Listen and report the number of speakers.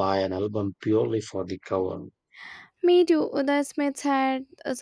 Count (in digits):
2